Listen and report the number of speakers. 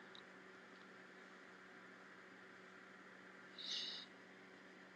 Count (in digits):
0